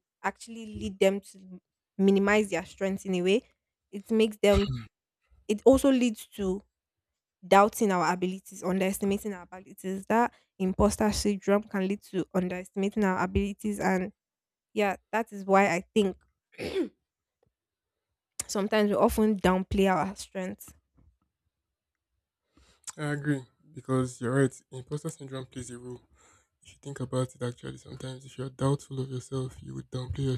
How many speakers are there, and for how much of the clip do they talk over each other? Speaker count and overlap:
2, no overlap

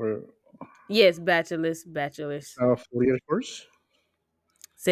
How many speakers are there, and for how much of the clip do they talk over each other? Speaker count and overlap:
2, no overlap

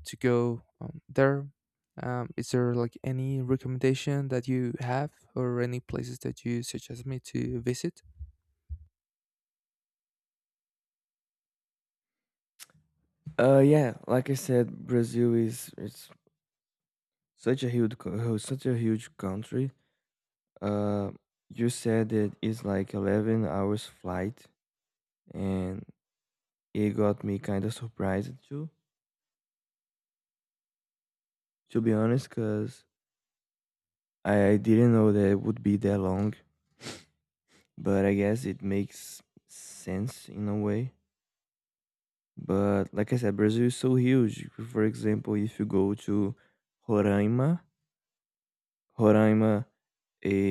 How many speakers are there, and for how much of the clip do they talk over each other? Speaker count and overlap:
2, no overlap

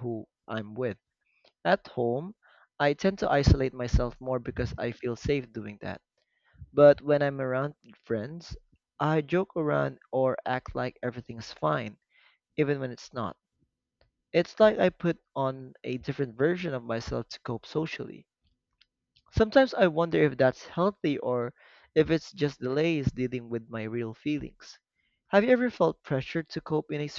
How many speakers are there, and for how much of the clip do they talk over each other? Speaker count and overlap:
1, no overlap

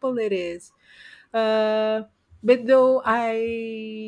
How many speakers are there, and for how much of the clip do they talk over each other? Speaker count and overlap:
1, no overlap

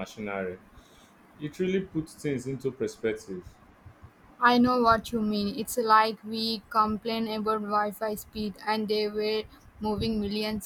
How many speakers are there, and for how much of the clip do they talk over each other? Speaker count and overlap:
2, no overlap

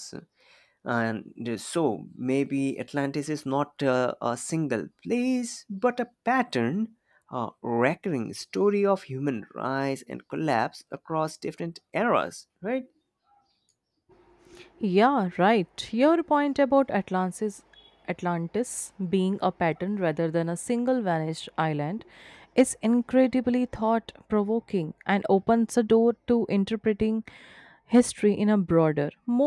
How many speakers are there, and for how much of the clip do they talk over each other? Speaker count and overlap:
2, no overlap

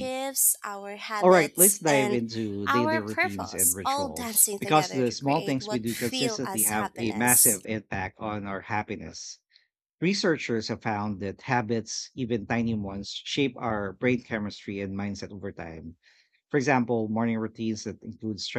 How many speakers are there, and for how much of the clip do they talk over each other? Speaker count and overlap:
2, about 31%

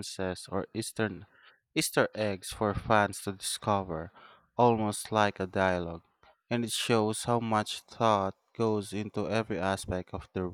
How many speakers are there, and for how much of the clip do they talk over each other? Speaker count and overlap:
1, no overlap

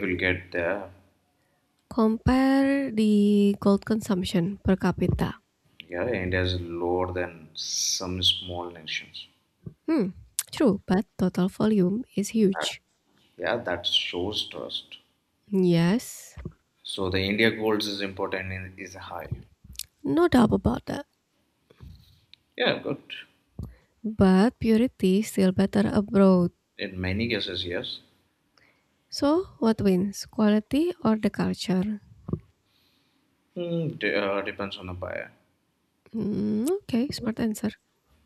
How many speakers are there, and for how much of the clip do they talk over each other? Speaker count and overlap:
2, about 1%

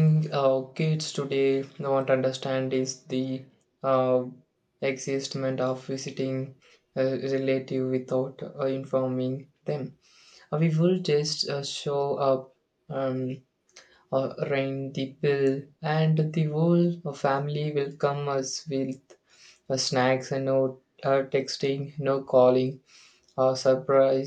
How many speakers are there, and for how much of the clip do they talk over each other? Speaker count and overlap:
1, no overlap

